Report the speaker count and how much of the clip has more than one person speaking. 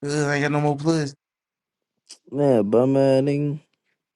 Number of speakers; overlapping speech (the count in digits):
2, no overlap